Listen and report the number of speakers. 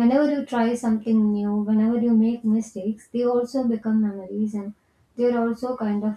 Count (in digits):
1